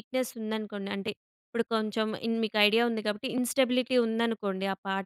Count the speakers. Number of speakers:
1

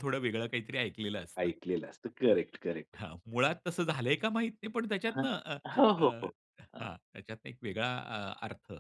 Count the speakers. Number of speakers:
2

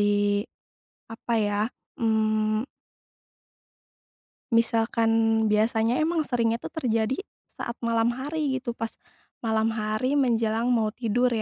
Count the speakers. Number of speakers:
1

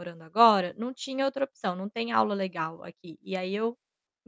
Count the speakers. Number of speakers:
1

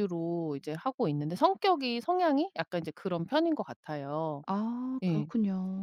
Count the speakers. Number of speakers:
2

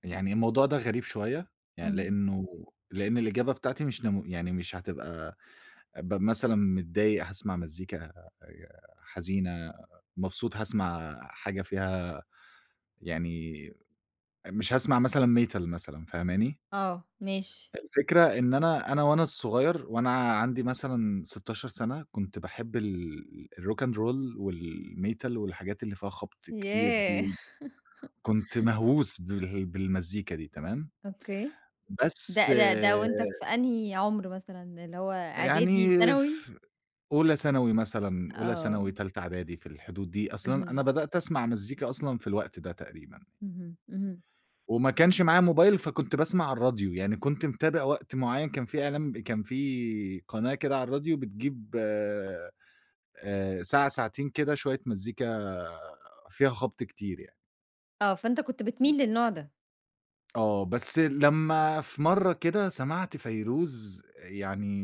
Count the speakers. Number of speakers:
2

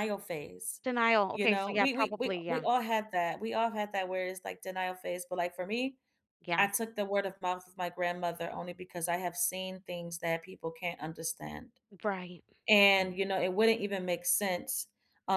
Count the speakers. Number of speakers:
2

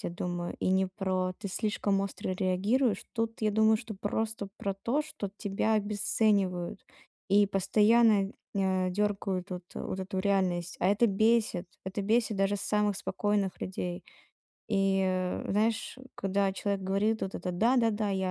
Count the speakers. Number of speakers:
1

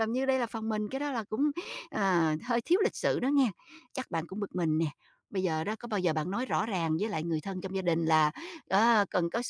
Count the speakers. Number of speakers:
1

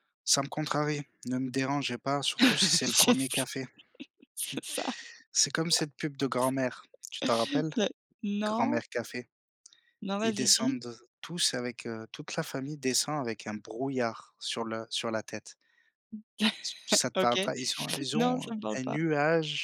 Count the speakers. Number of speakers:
2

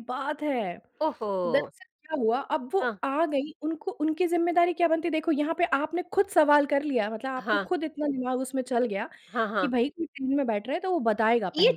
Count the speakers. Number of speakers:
2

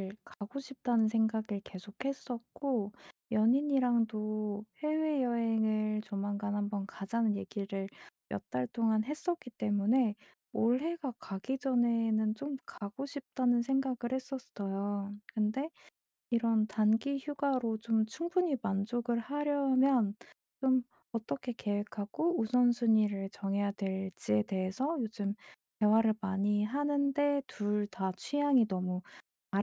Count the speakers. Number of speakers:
1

